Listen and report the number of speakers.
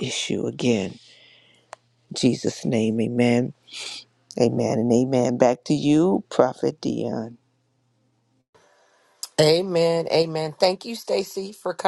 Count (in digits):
2